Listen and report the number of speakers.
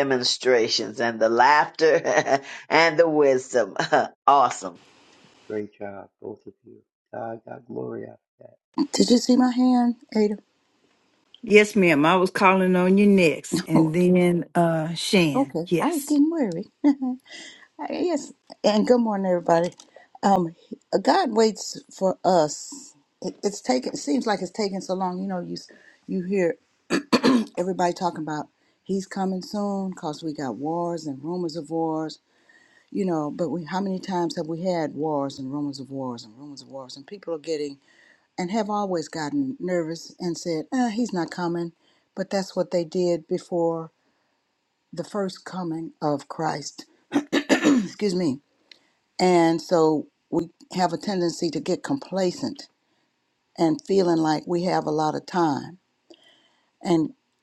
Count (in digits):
4